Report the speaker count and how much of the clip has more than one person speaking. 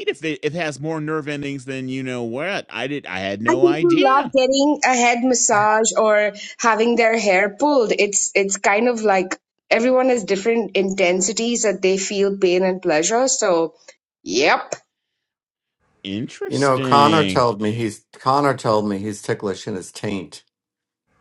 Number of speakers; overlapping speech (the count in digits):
3, about 7%